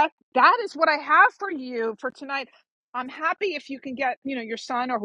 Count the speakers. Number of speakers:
1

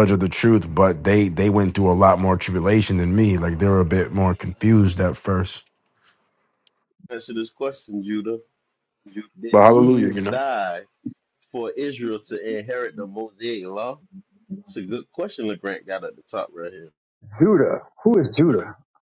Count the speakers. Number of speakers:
3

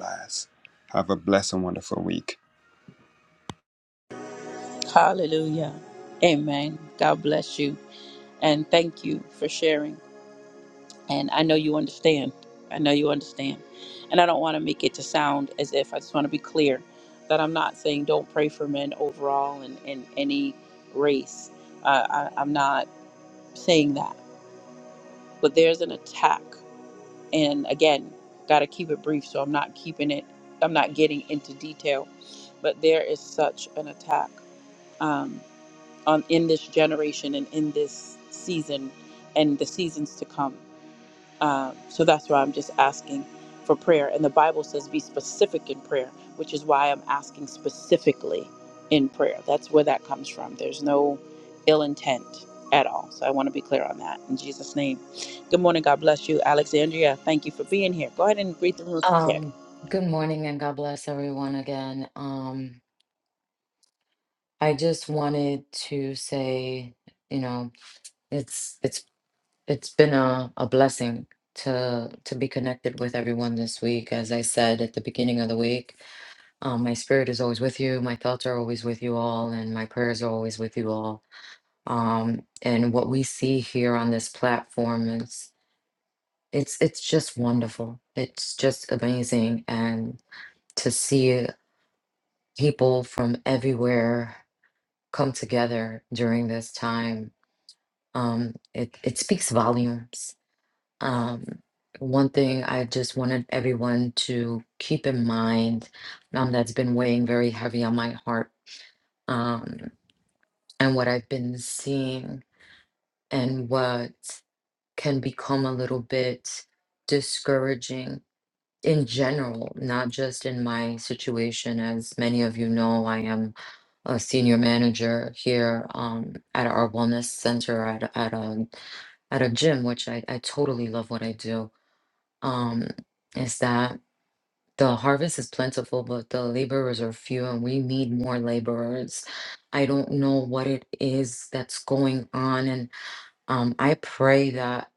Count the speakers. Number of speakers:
3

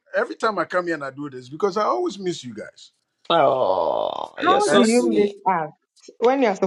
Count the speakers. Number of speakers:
3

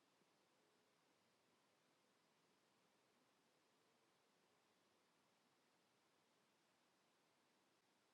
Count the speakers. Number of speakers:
0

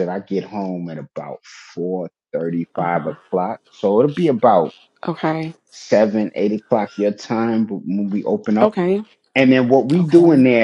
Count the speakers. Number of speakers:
2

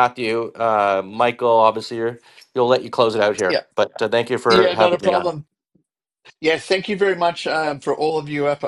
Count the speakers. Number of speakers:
2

